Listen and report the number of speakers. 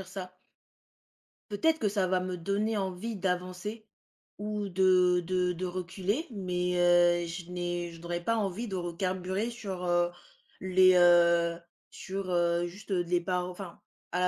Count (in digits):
1